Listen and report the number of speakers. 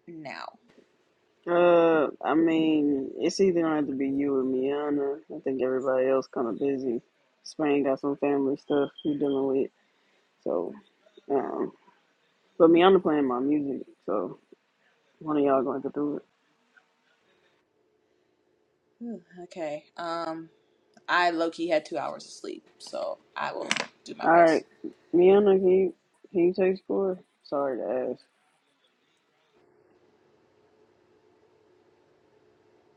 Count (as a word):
two